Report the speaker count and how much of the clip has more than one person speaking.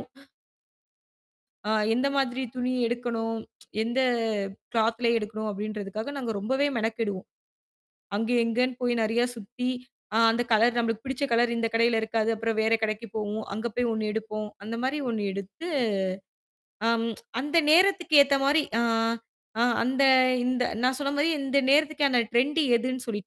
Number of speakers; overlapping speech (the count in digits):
1, no overlap